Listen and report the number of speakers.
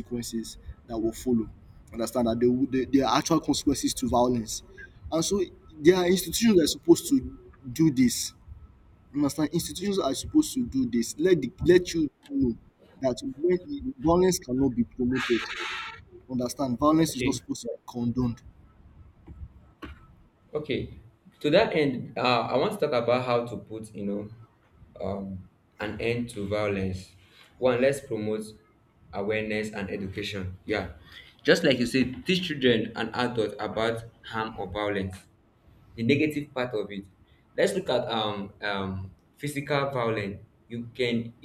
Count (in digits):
2